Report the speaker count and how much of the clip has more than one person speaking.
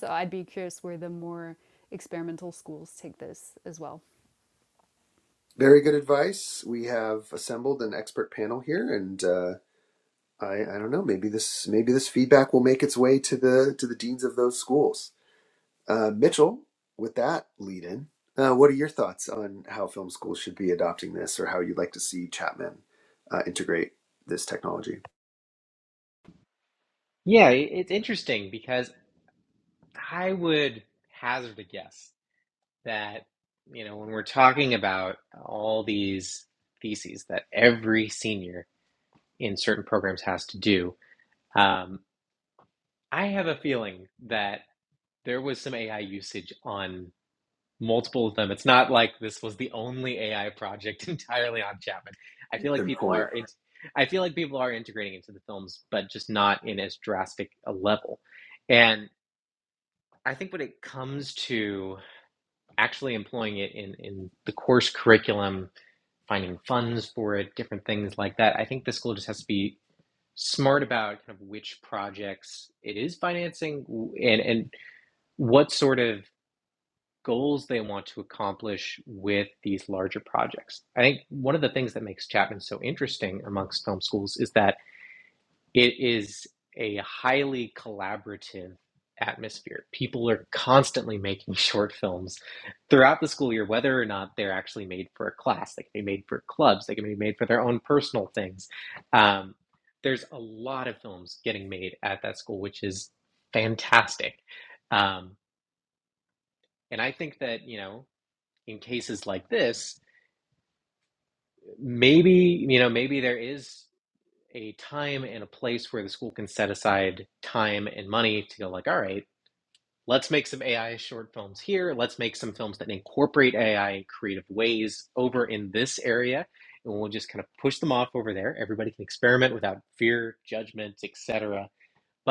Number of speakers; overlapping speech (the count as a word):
three, under 1%